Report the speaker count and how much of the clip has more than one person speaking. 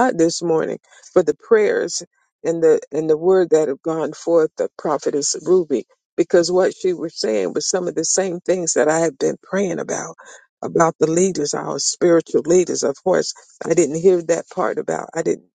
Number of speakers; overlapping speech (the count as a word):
one, no overlap